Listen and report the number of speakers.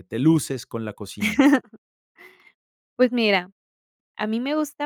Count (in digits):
2